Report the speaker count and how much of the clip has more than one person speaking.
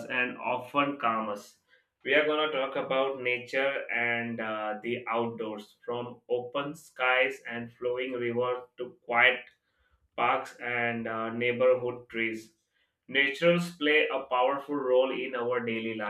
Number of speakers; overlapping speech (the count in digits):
1, no overlap